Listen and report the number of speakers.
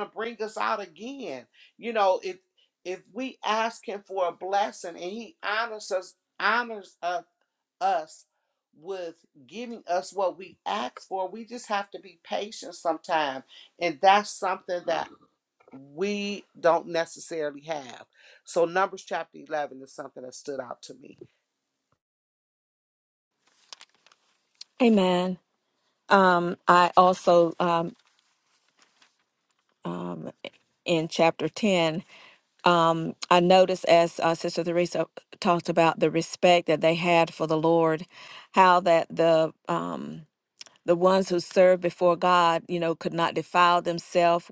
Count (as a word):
two